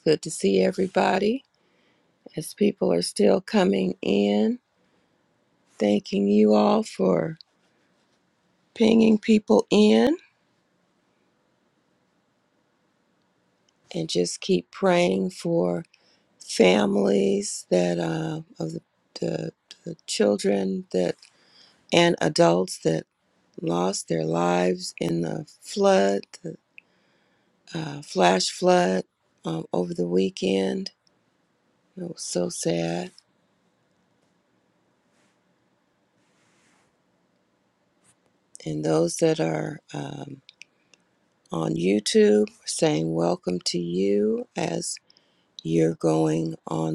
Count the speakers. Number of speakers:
1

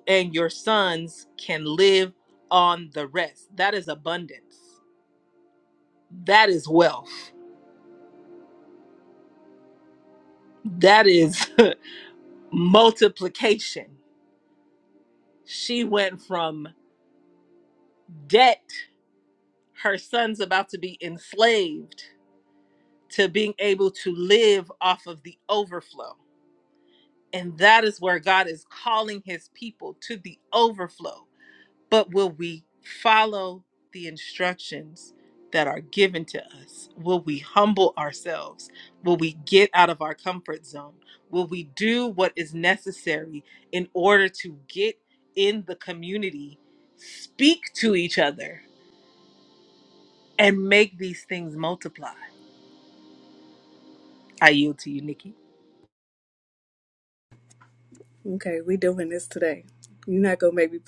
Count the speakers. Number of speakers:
2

